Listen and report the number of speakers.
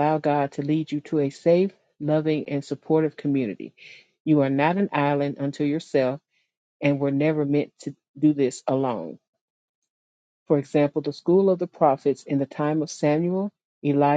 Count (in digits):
1